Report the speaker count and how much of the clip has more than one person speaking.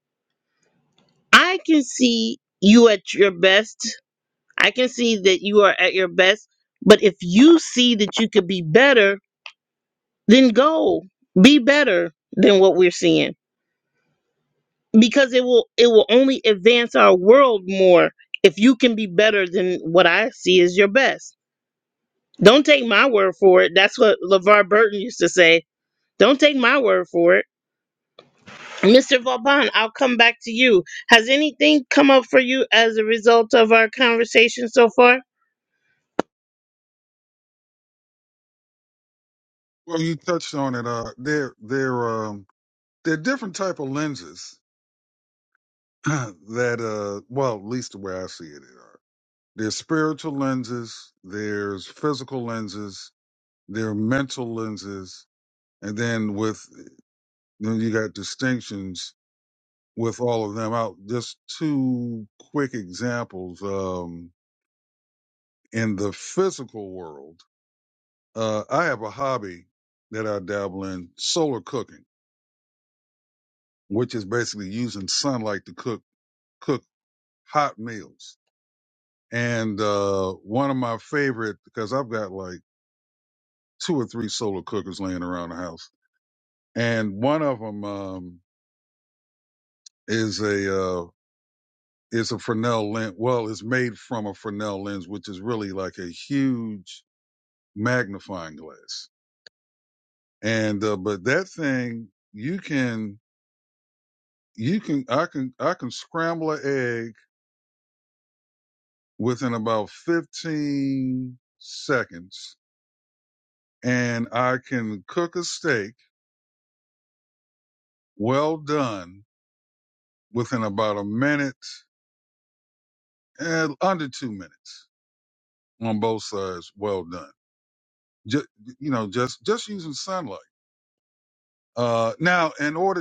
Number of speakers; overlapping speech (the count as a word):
two, no overlap